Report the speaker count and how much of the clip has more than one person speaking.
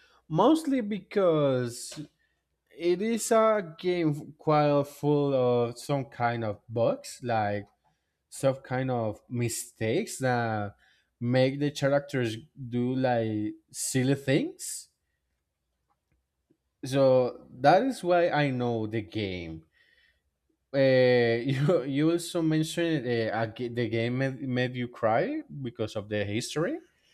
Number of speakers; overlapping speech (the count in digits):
1, no overlap